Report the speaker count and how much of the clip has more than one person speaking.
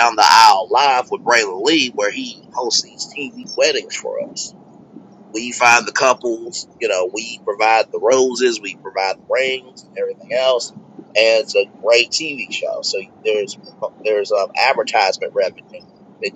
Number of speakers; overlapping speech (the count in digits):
1, no overlap